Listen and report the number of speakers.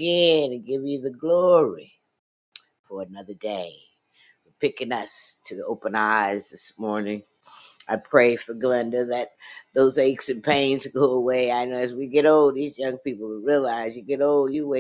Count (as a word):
one